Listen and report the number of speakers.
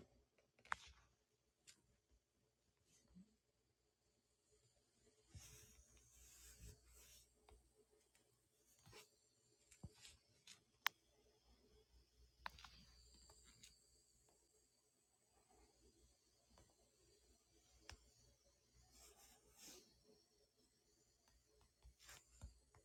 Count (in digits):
0